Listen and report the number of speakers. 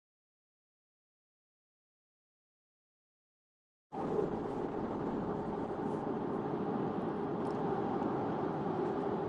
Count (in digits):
0